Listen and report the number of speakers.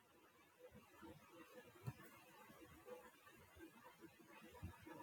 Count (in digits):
0